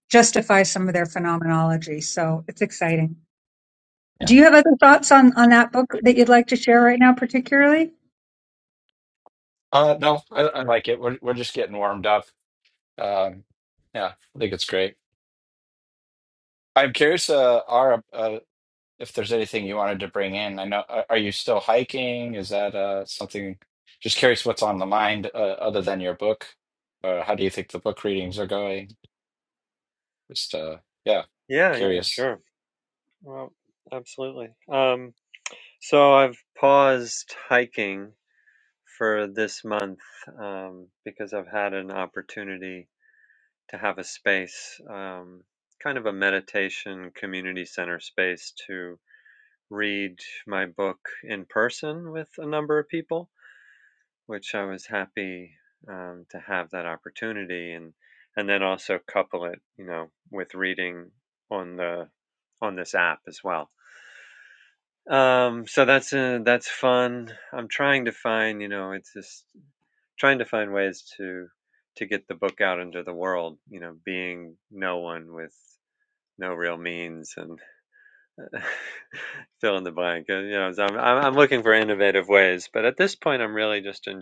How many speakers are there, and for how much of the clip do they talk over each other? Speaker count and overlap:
three, about 1%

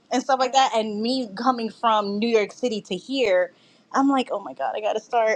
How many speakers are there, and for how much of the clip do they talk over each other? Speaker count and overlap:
one, no overlap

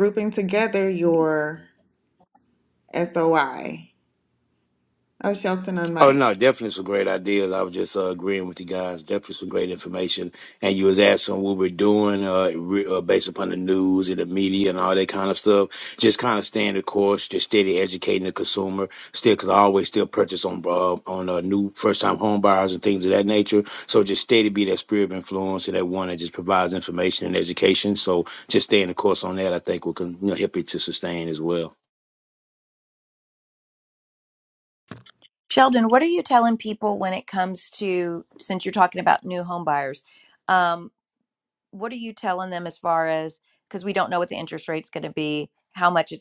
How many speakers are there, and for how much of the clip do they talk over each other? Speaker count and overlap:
three, under 1%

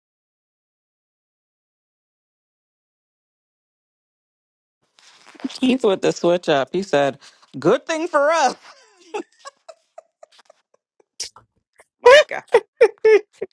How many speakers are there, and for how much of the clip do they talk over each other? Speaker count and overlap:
one, no overlap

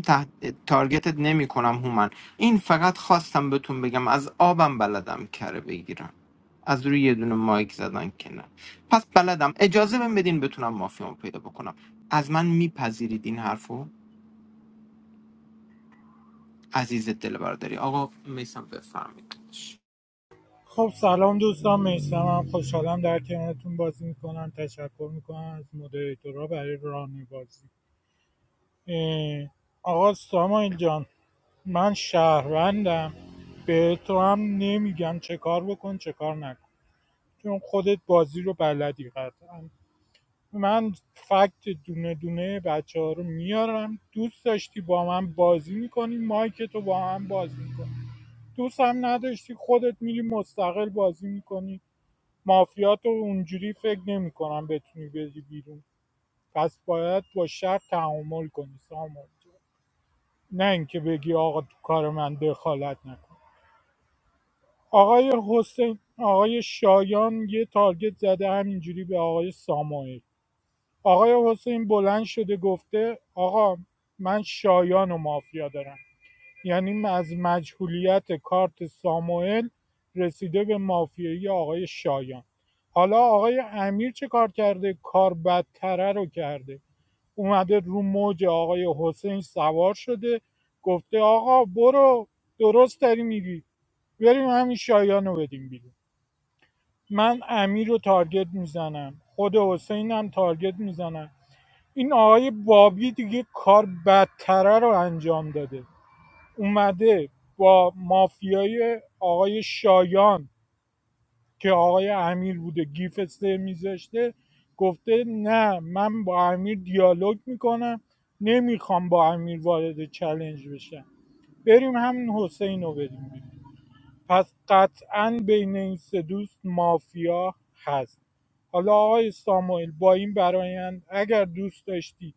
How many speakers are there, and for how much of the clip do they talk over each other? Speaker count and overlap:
two, no overlap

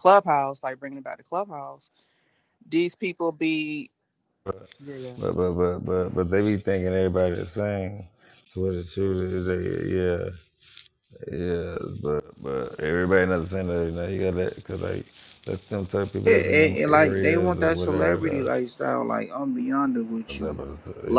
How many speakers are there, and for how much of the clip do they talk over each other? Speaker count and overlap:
three, about 13%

